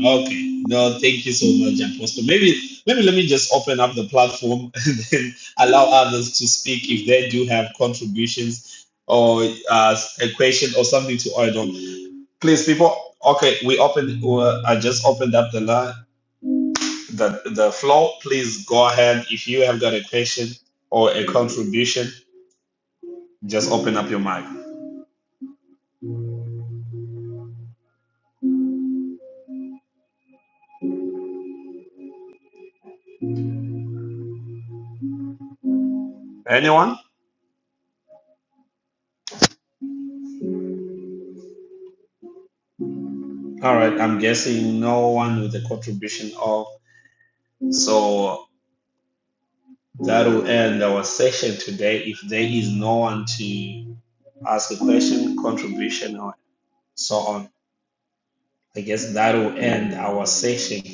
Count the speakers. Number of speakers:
one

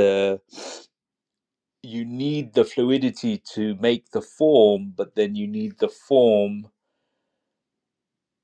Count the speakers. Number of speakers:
one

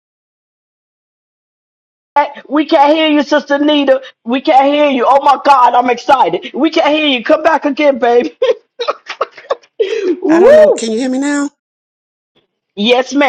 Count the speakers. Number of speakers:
two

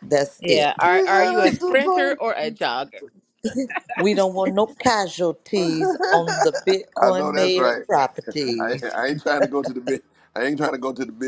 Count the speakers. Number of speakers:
three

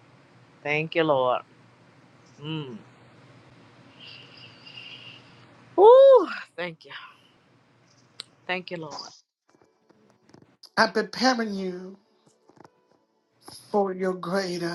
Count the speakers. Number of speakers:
two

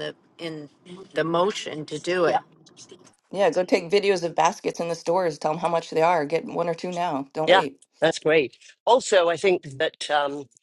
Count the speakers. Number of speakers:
three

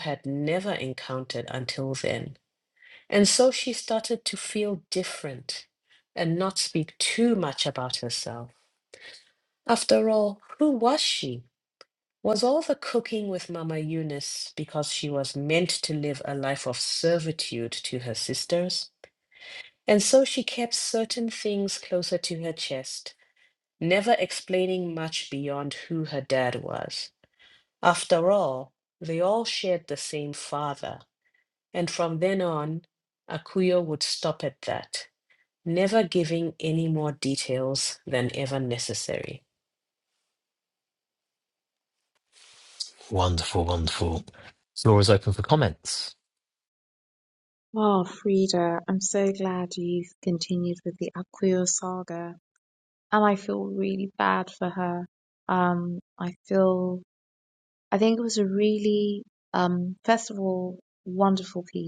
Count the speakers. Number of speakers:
three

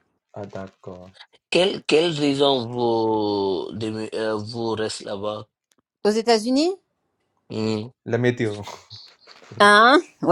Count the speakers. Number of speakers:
three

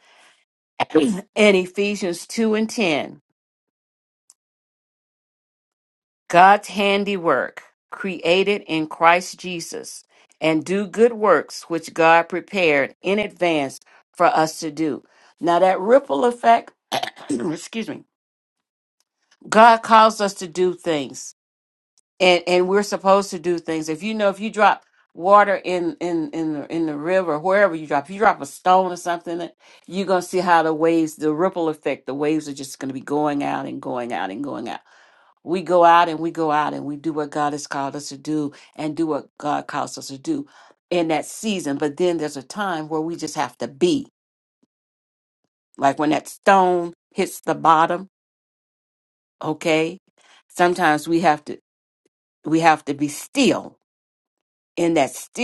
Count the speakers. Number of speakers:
one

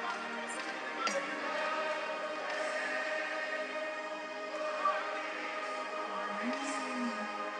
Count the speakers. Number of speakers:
zero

